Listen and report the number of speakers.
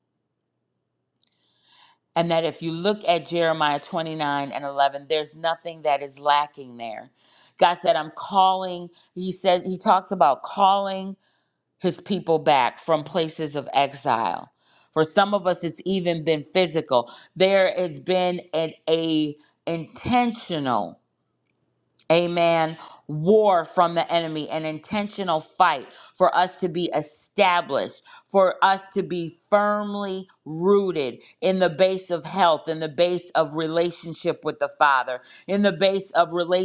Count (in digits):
1